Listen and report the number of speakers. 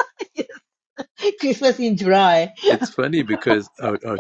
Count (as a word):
two